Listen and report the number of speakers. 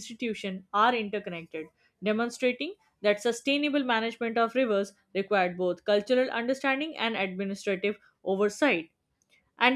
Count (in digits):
1